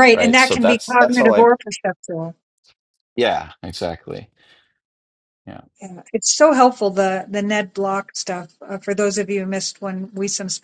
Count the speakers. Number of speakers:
2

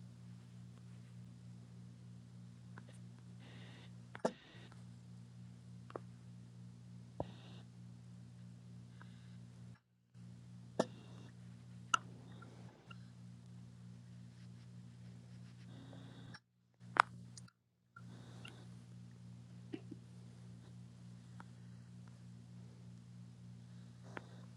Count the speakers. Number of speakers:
0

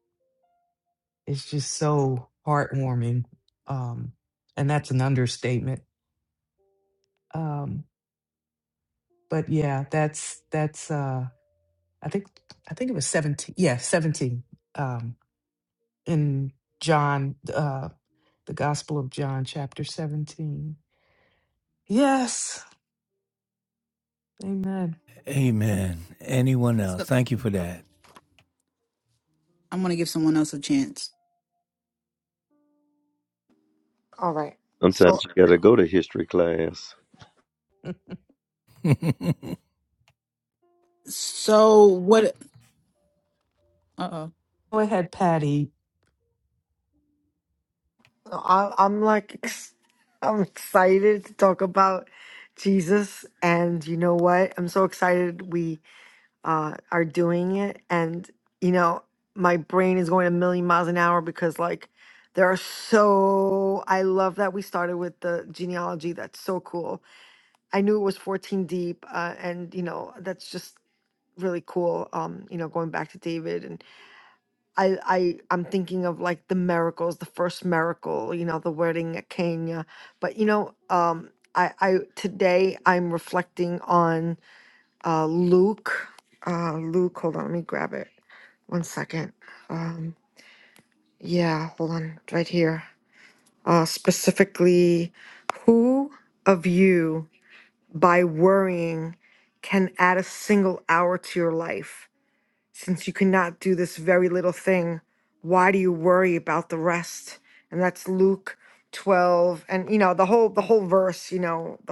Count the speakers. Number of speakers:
5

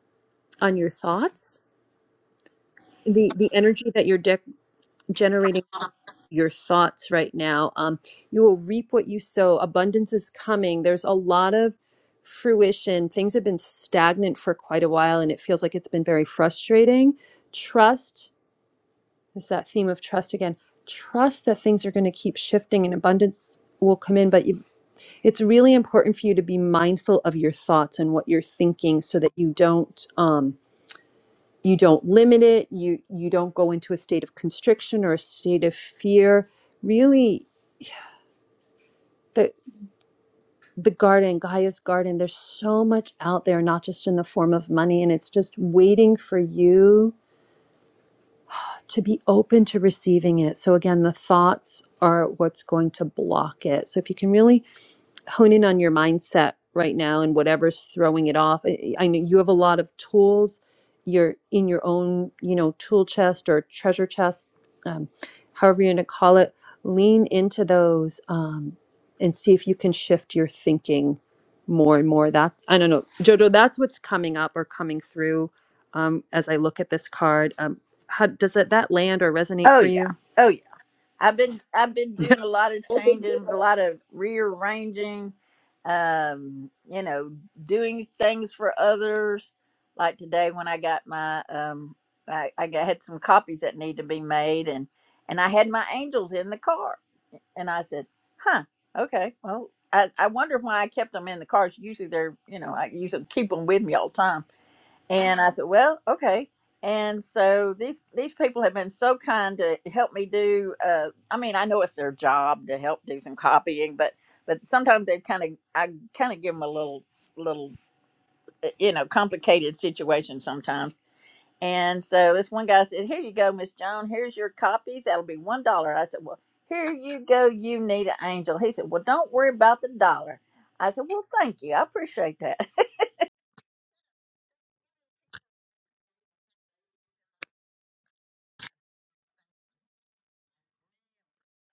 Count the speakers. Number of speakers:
2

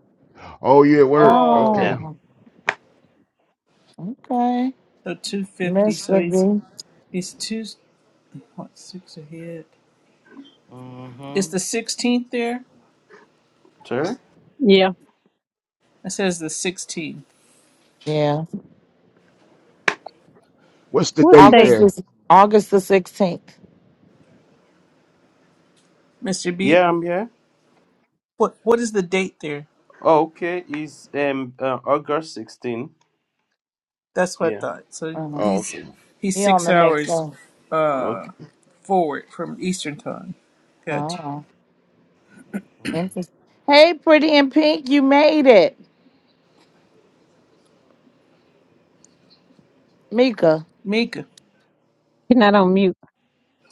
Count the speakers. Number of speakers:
6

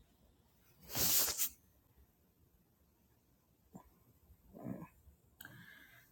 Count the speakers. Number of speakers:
0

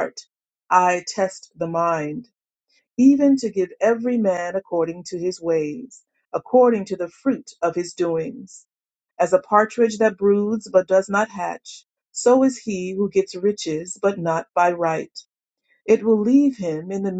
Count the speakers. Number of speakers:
1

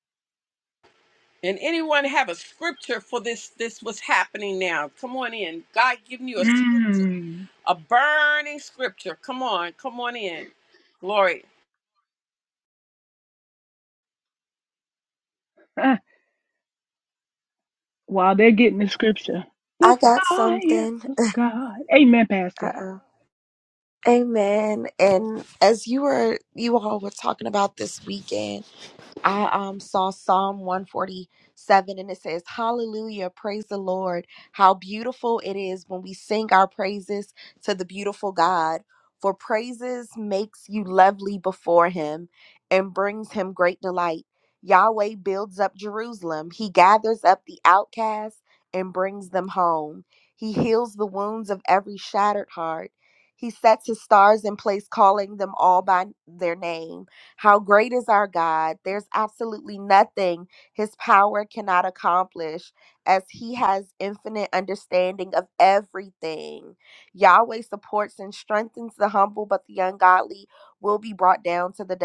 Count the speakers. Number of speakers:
3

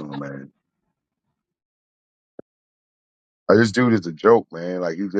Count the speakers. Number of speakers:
1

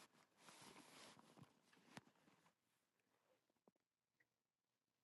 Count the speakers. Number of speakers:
0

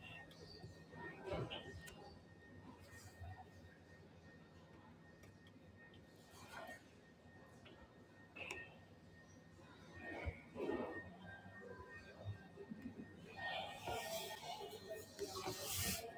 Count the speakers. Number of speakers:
0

